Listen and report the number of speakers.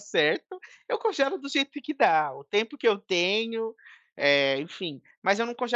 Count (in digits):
1